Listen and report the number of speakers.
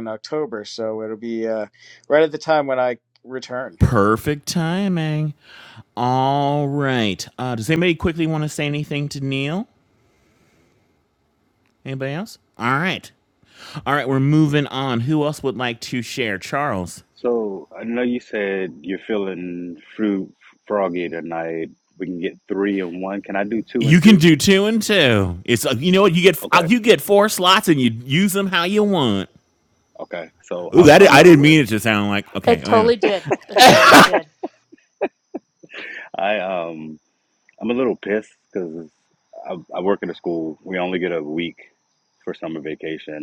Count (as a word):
four